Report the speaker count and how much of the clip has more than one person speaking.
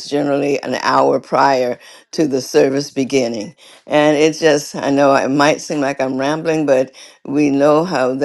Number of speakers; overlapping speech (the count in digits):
1, no overlap